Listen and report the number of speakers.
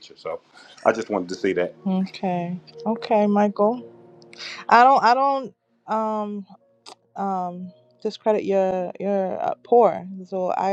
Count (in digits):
2